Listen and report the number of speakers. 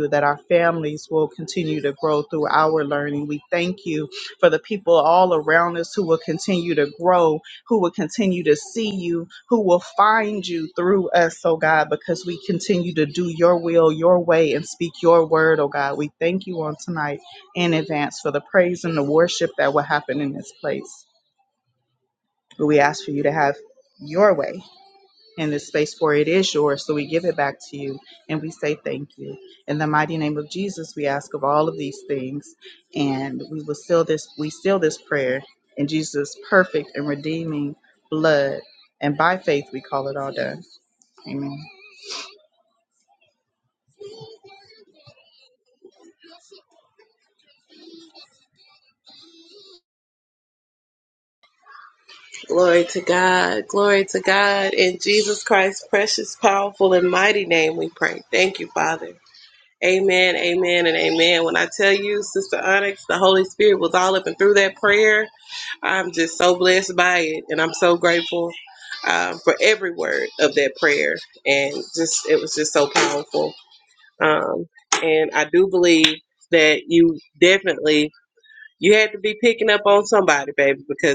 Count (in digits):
2